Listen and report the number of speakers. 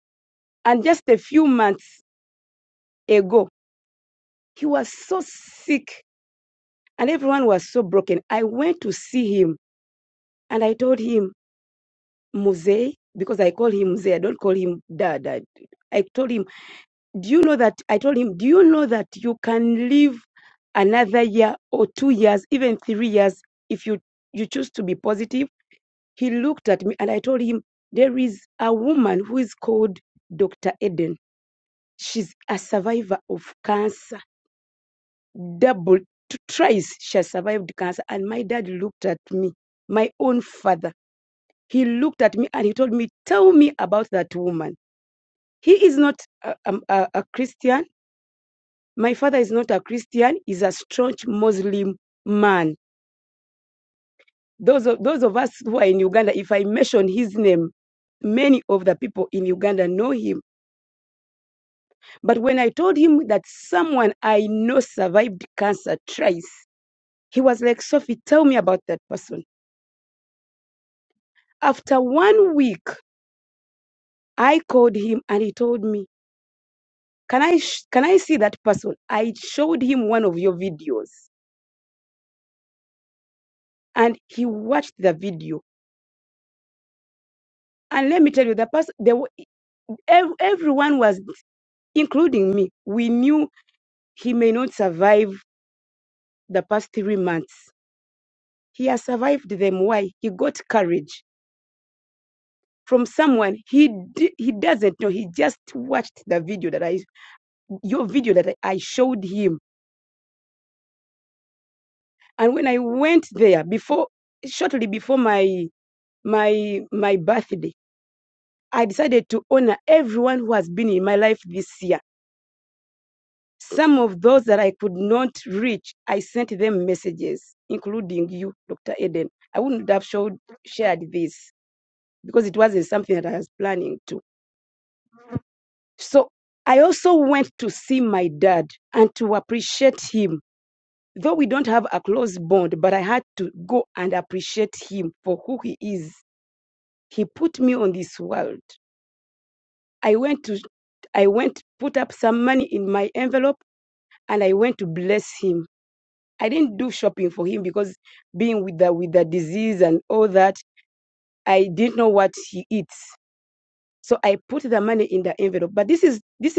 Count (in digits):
1